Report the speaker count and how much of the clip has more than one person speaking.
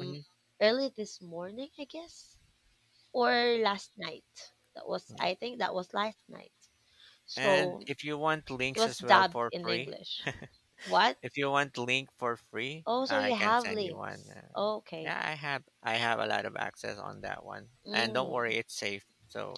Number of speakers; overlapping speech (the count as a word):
two, about 18%